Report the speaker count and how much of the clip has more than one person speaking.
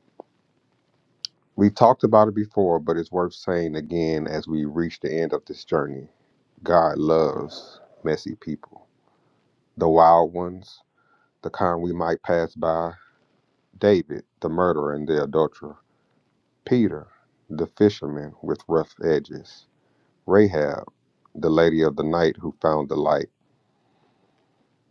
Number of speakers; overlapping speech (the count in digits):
1, no overlap